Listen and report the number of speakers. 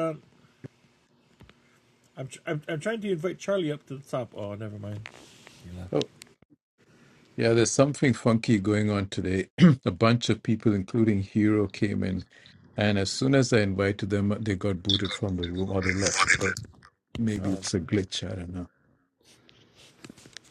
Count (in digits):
2